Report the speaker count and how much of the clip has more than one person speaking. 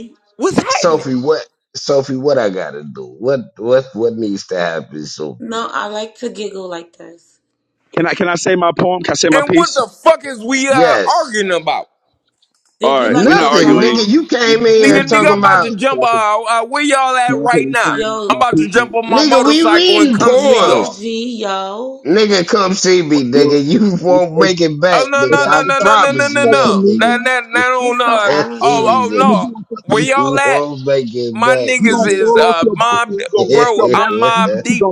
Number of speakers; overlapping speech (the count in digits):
4, about 48%